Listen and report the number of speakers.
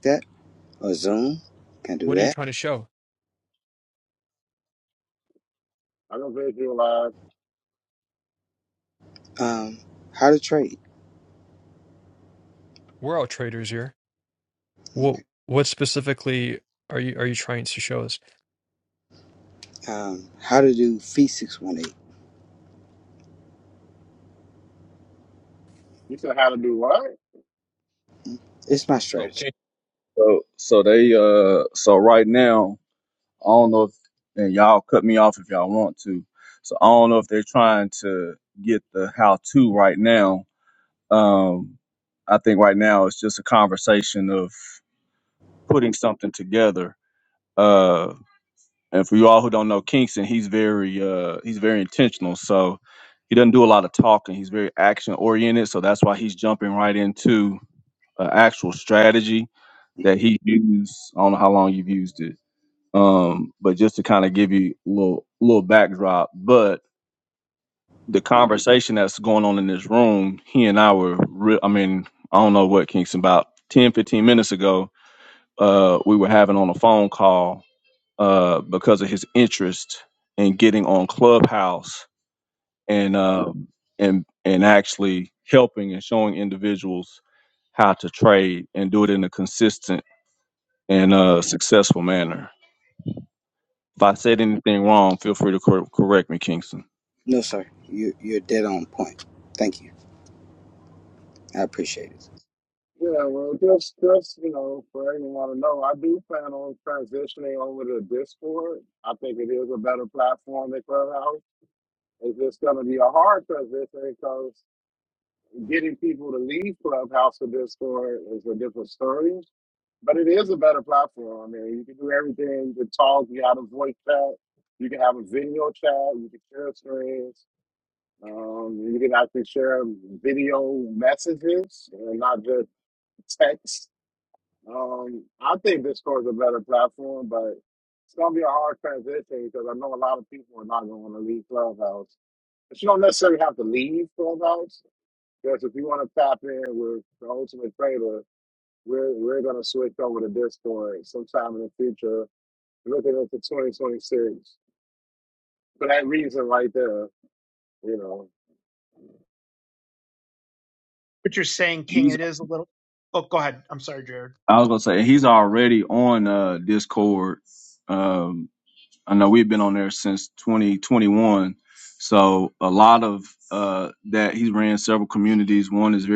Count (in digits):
5